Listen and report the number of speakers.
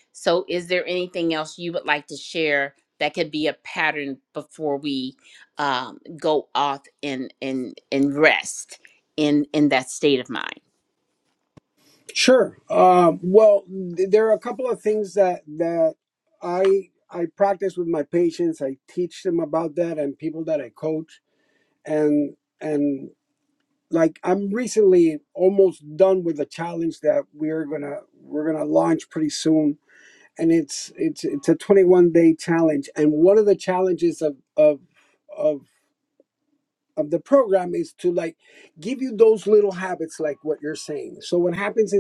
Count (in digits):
2